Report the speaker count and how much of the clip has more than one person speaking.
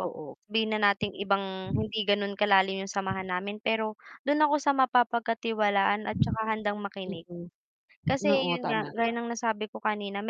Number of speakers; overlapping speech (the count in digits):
2, about 10%